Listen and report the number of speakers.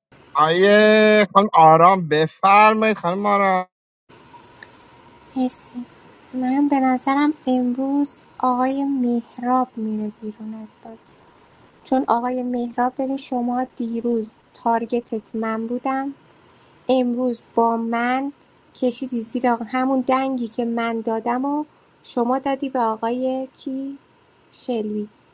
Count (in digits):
2